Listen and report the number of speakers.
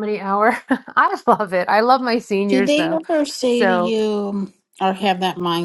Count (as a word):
two